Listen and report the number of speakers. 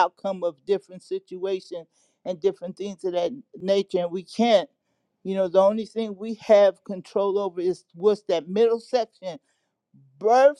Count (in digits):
1